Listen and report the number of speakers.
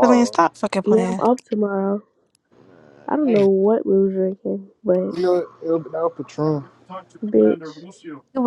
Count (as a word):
three